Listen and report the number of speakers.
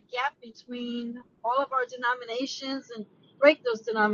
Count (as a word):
one